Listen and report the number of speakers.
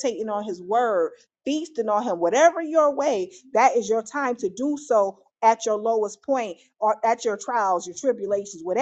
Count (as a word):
one